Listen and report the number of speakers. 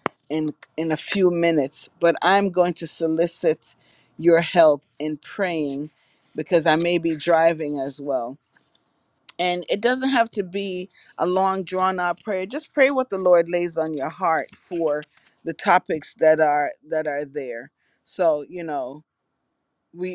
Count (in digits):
1